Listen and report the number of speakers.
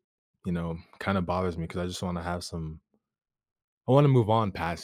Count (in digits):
1